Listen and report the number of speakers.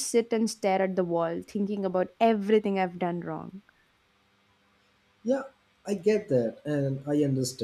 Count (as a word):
two